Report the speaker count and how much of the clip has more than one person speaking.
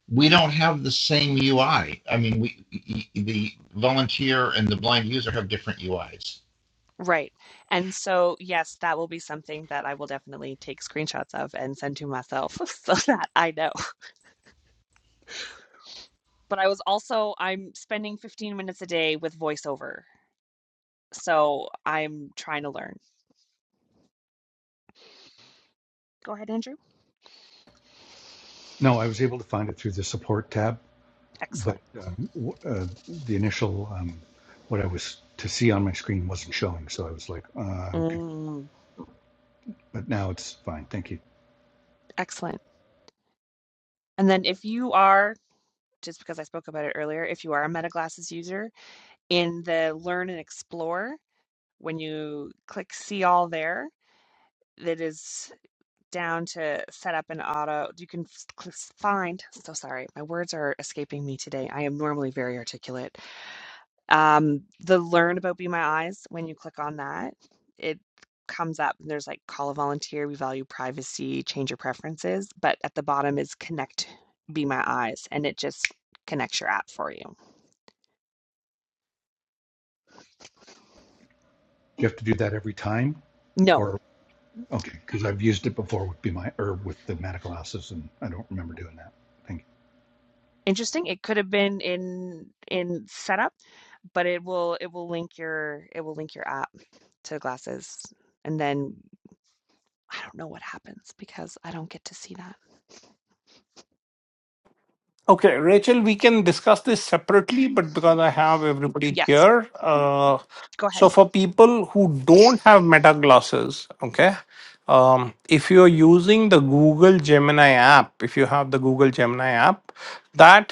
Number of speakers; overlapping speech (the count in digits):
4, about 1%